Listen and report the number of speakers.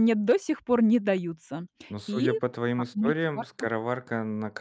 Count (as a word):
two